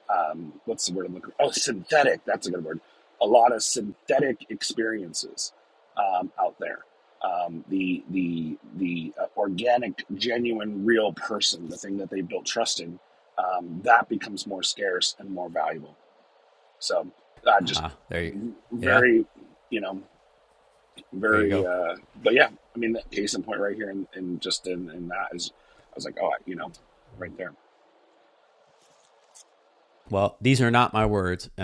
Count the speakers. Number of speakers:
two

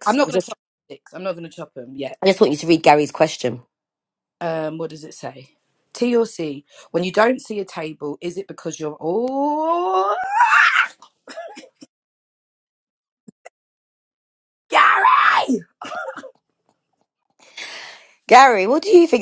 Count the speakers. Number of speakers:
two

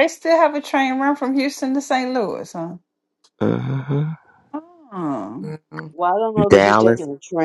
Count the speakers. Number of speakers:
three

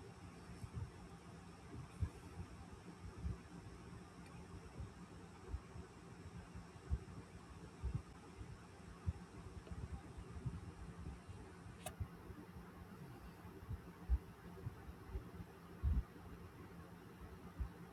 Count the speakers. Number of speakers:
zero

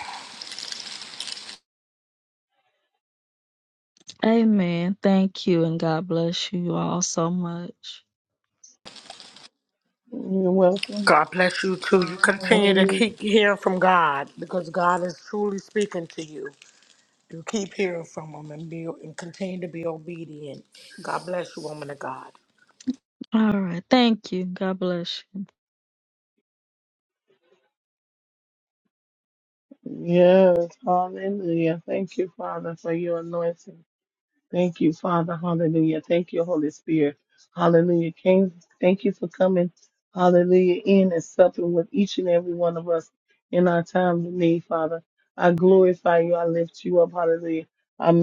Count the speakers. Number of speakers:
three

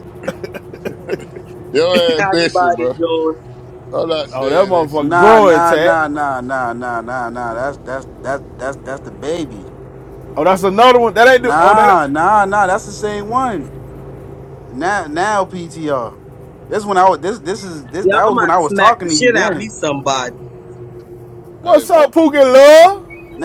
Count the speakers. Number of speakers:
four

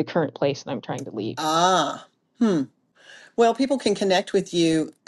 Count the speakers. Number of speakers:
two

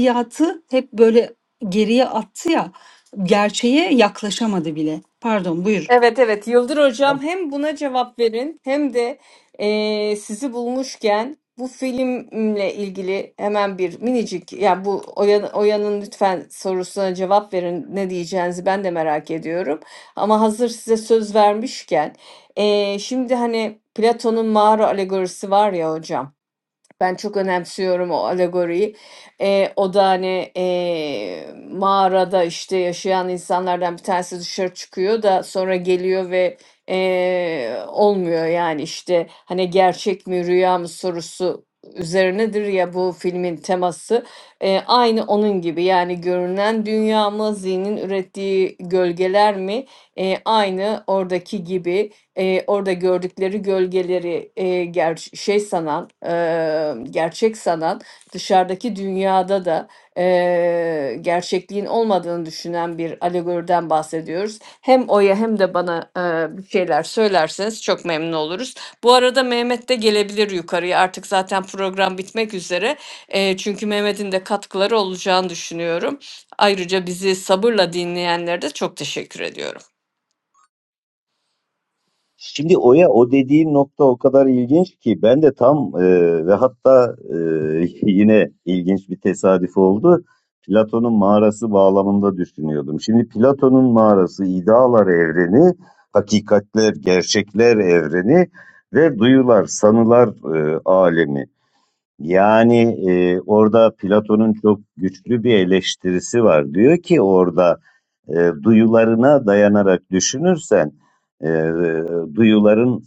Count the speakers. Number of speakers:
three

